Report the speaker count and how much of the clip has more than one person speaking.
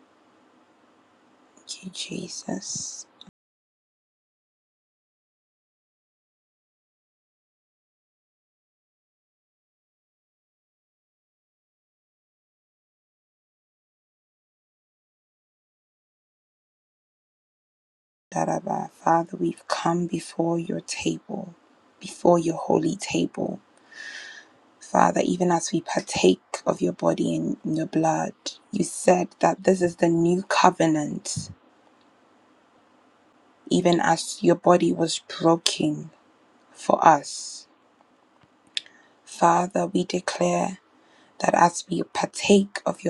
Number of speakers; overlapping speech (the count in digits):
1, no overlap